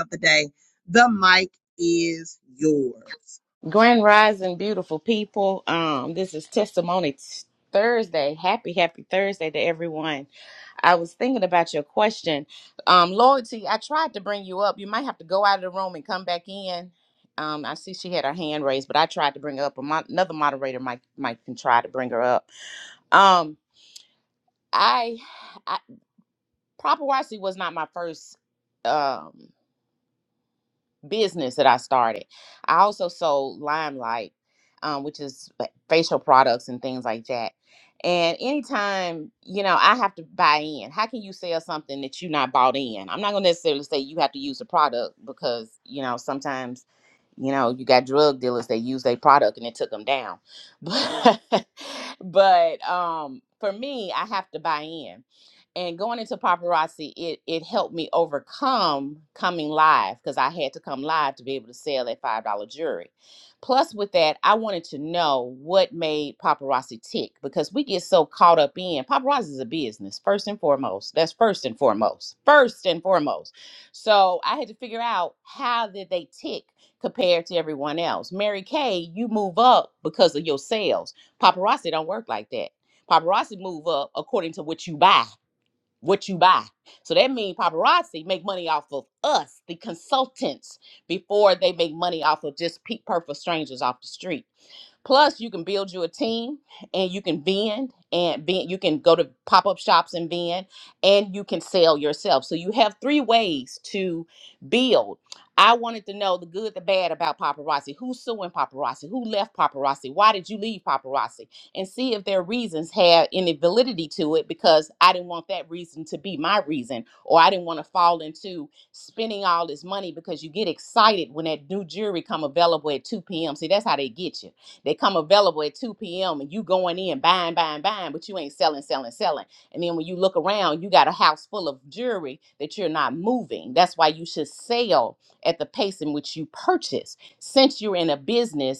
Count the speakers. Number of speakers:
2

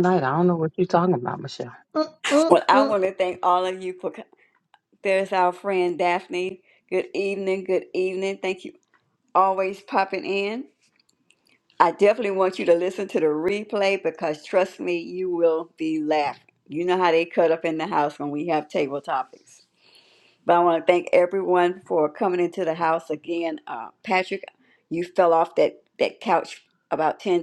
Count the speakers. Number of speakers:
2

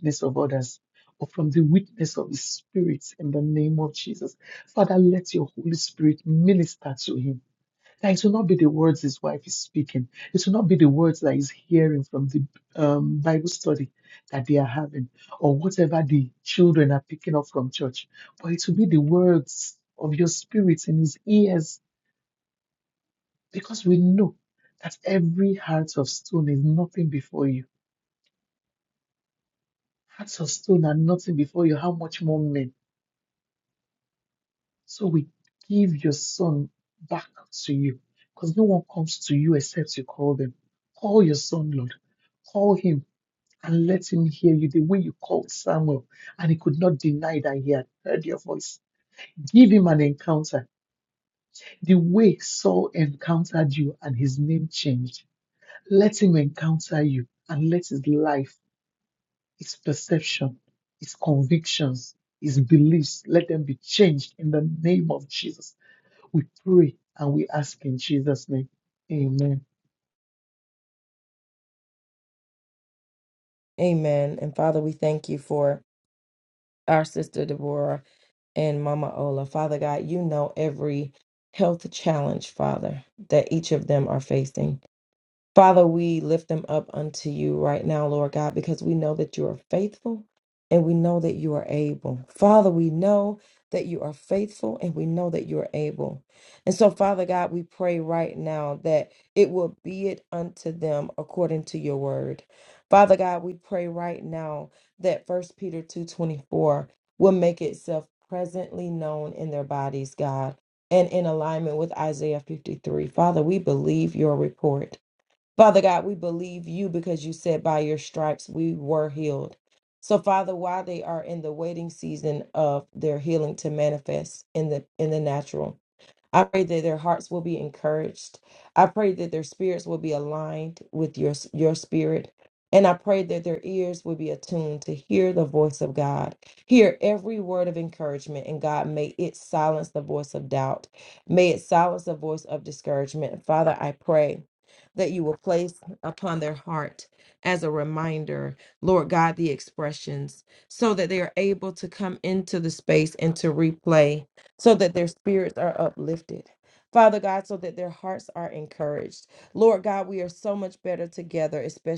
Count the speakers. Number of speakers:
2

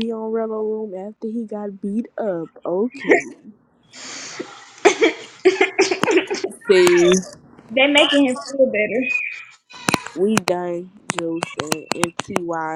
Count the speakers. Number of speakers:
2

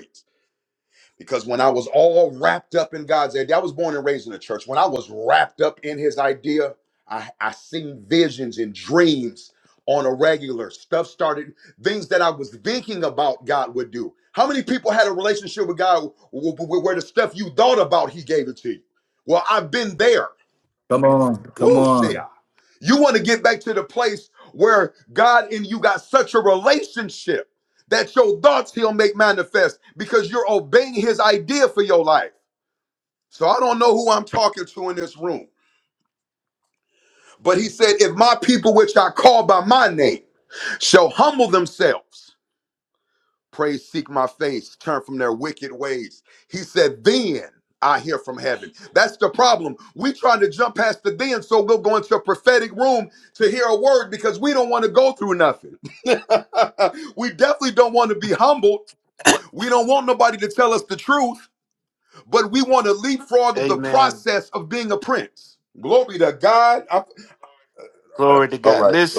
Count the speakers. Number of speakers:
3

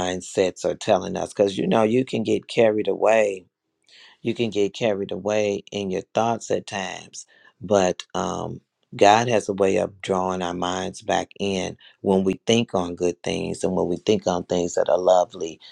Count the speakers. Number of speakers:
1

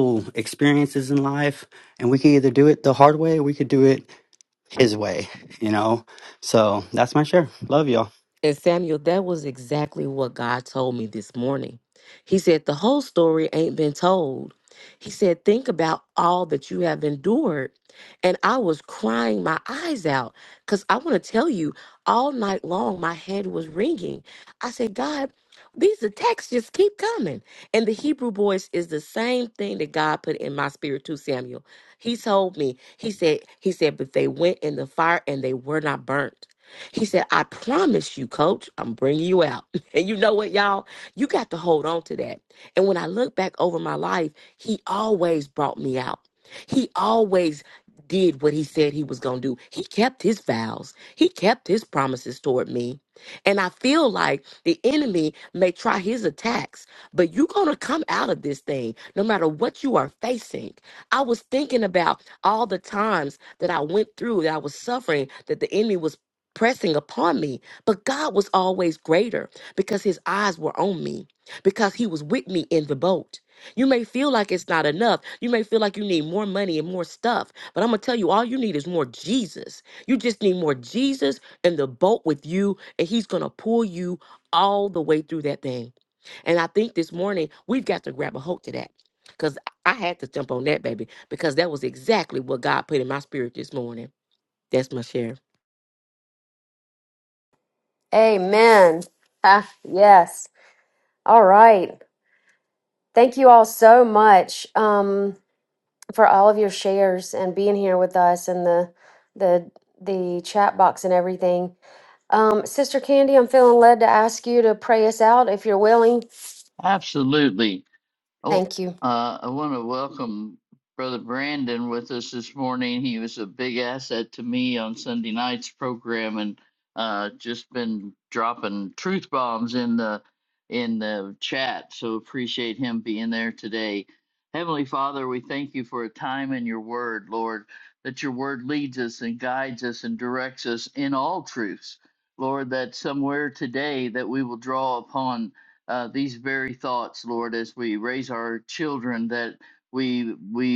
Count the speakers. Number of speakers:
4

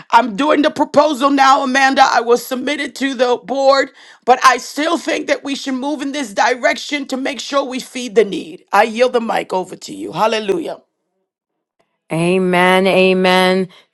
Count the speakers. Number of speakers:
2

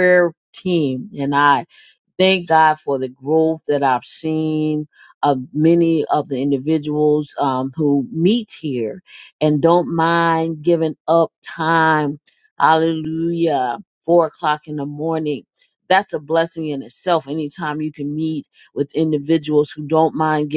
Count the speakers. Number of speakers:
1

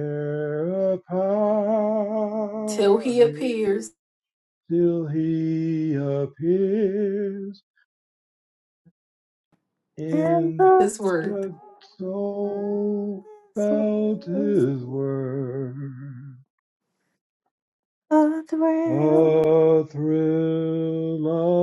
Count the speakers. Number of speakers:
3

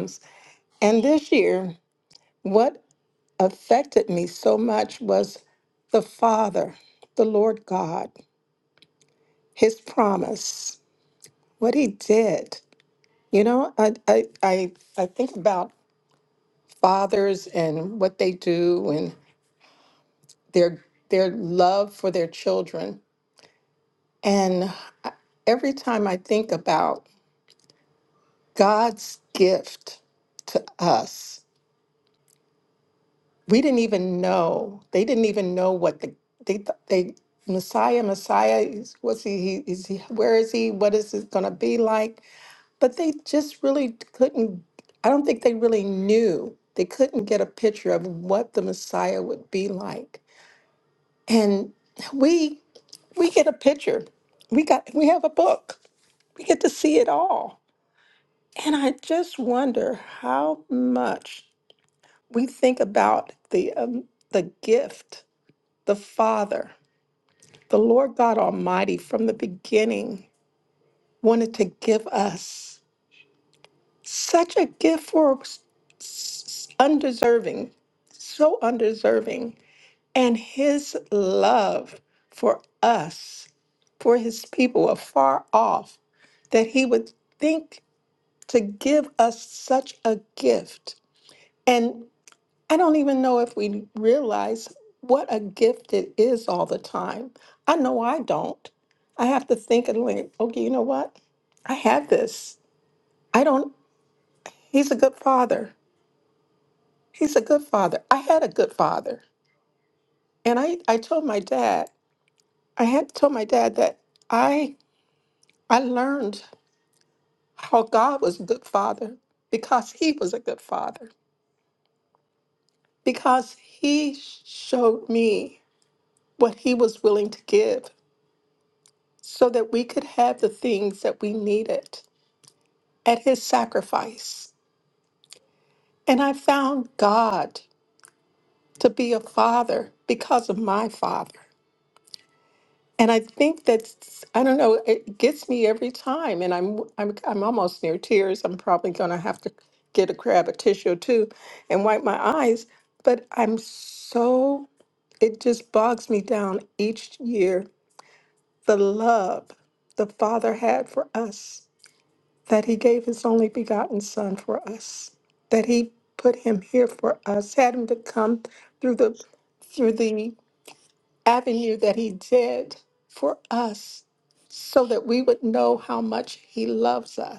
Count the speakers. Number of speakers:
1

